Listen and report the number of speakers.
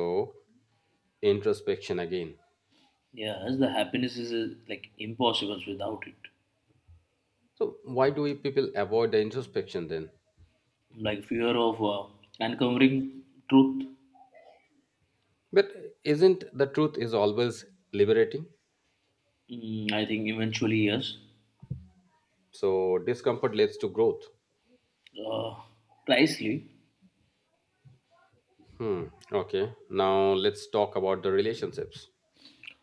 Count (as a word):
two